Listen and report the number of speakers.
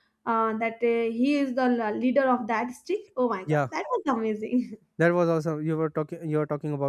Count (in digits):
2